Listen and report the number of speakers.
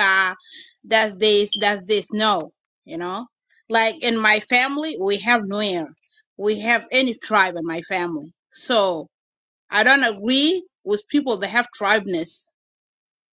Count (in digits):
1